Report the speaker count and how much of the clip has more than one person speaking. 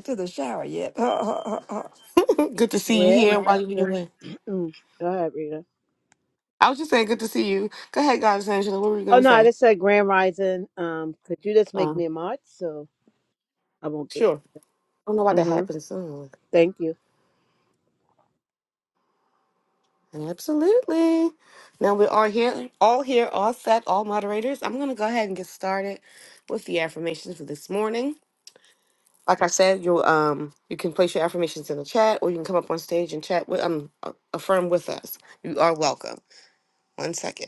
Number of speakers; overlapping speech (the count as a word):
three, about 6%